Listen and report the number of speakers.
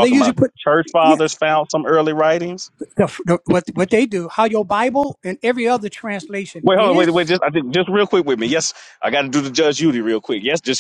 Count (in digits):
2